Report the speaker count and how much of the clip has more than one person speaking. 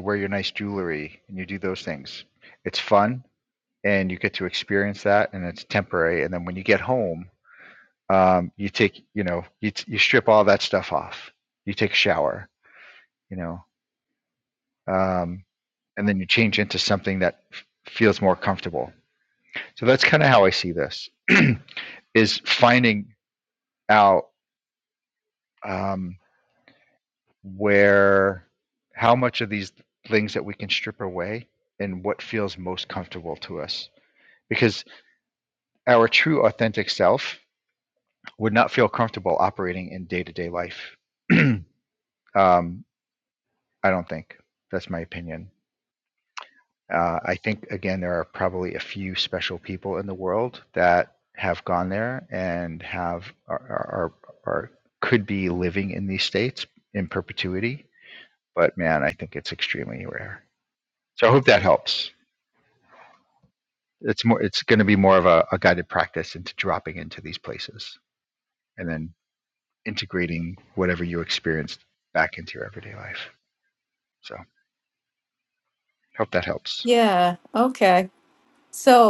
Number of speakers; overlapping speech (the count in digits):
2, under 1%